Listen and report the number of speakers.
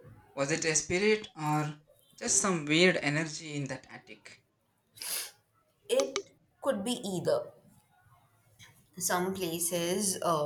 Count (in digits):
2